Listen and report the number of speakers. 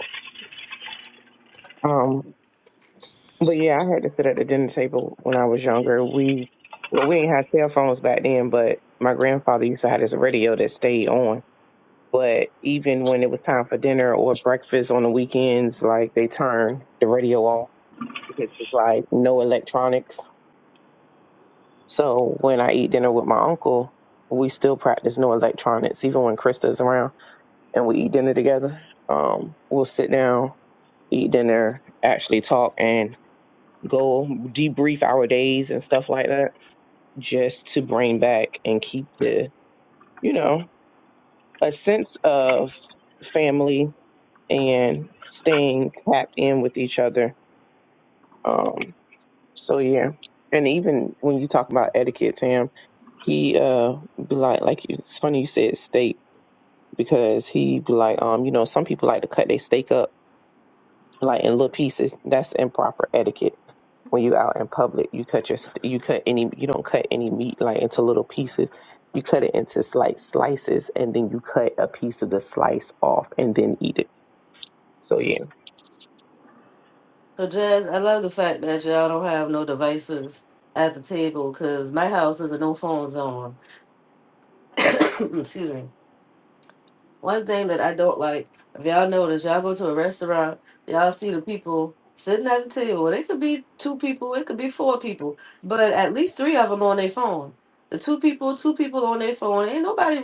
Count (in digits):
2